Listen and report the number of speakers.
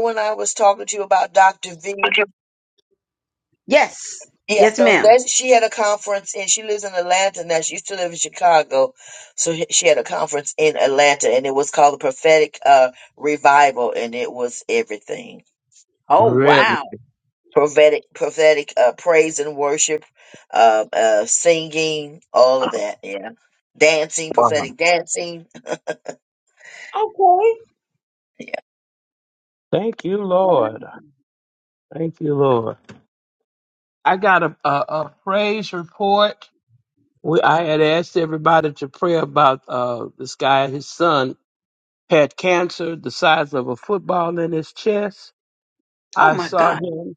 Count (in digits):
3